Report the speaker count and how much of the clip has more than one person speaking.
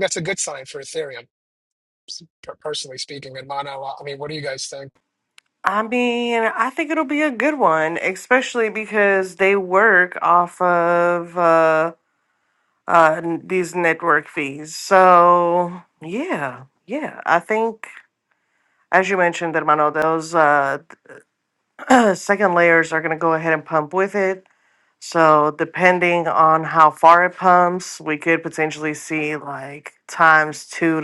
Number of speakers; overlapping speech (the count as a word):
two, no overlap